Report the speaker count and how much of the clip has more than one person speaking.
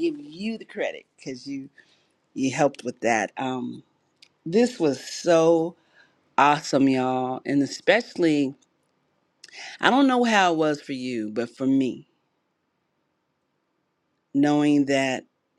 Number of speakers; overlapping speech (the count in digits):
1, no overlap